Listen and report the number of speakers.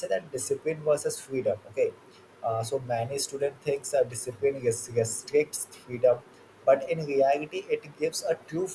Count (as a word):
one